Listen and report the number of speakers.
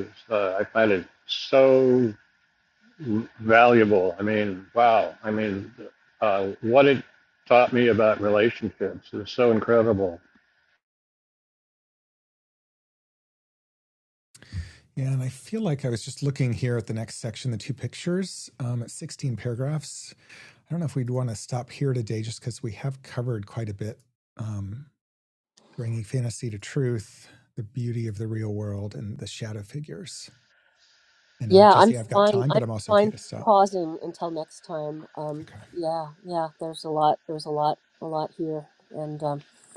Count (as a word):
three